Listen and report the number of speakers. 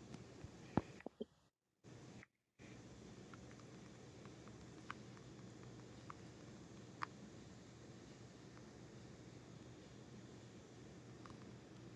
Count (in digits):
0